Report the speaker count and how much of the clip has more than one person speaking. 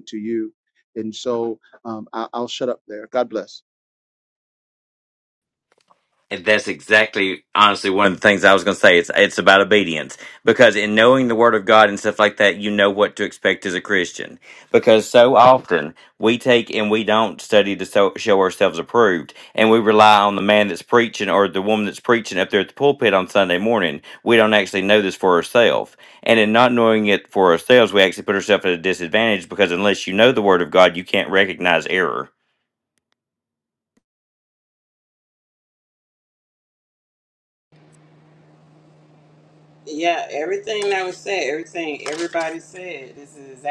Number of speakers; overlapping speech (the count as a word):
three, no overlap